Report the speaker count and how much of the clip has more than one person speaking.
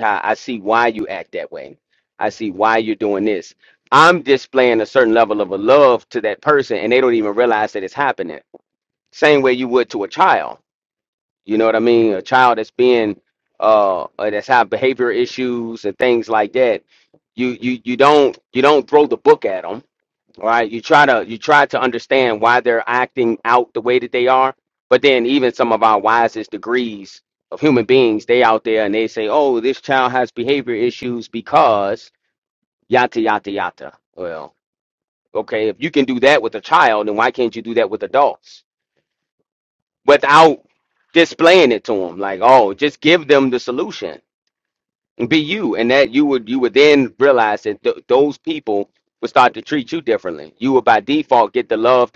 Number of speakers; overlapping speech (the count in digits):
1, no overlap